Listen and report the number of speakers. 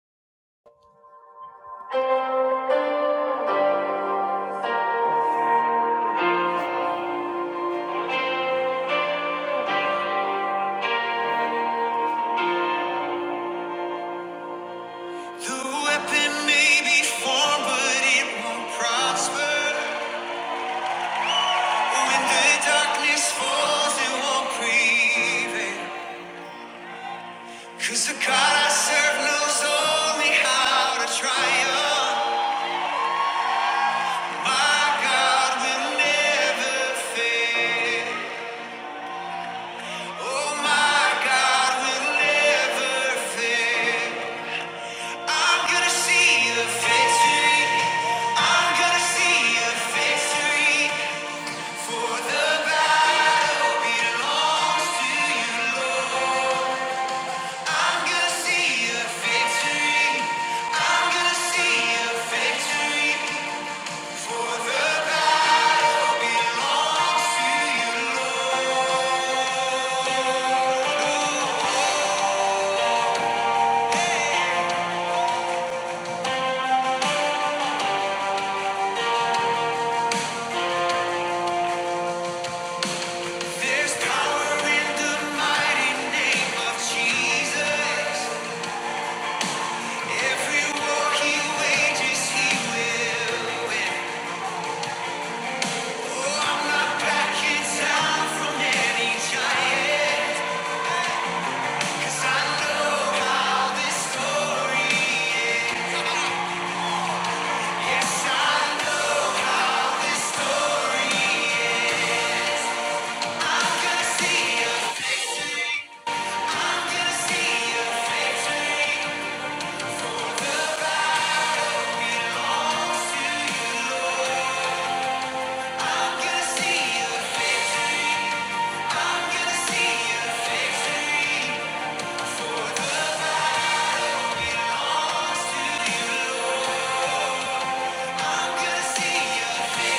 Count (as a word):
one